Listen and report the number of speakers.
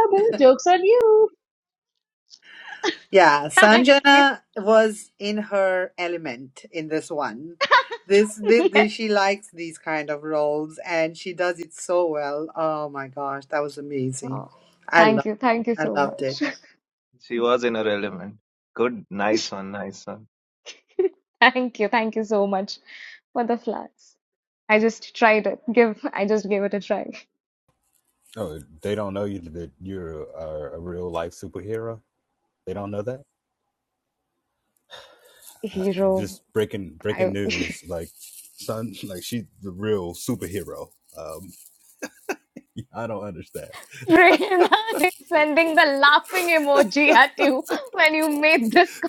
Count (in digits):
5